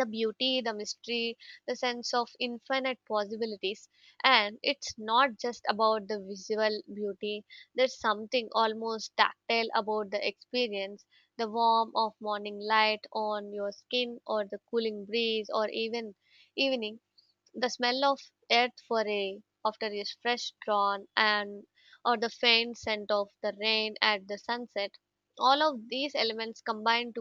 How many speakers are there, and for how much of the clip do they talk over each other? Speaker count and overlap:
one, no overlap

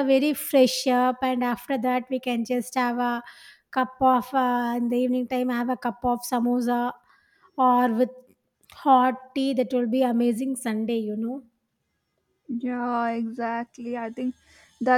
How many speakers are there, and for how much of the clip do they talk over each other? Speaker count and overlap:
two, no overlap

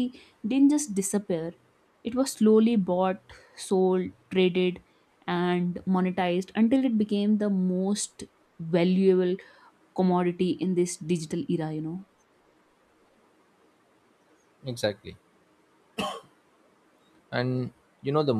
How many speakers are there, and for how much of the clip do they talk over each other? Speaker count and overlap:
two, no overlap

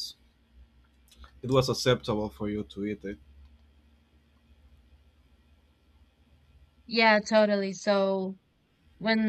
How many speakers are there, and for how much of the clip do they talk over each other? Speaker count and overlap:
two, no overlap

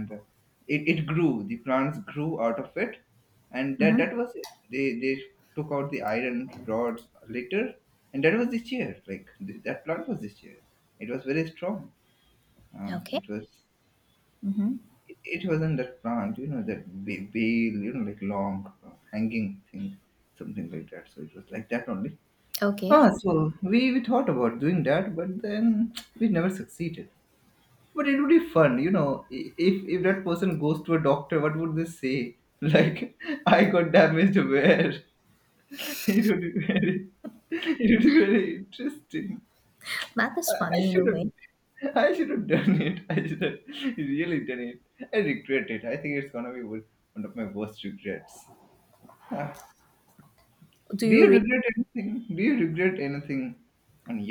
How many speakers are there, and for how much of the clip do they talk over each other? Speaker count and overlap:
two, about 4%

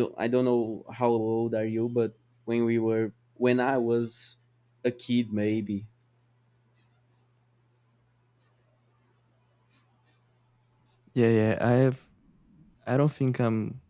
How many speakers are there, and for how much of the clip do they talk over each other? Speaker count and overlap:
two, no overlap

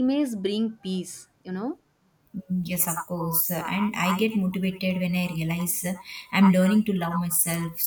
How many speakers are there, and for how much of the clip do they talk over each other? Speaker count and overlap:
two, no overlap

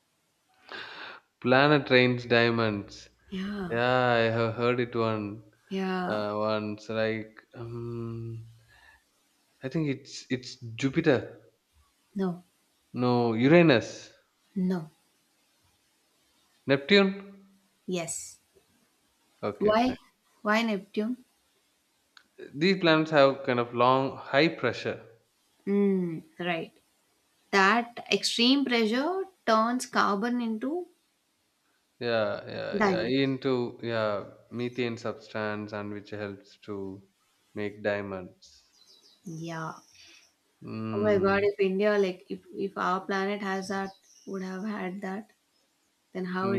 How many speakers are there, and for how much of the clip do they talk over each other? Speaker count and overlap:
two, about 3%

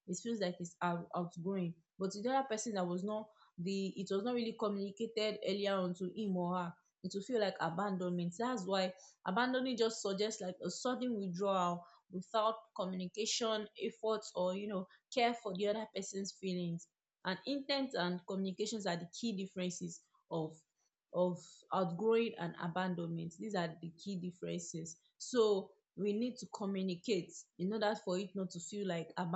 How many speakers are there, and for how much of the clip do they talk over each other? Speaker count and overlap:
one, no overlap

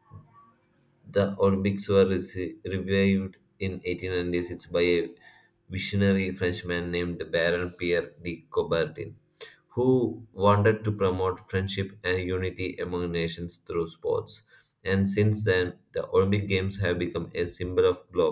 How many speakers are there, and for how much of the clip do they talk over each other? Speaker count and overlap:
one, no overlap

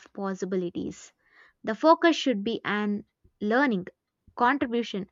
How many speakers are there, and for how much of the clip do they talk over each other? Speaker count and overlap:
one, no overlap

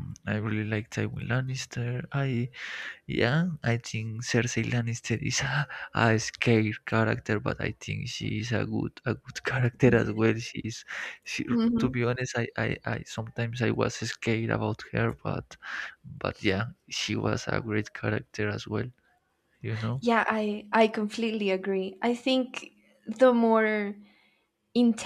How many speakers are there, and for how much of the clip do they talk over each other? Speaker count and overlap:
two, about 2%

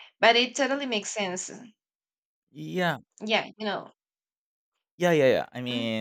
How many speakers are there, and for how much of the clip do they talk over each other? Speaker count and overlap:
two, about 3%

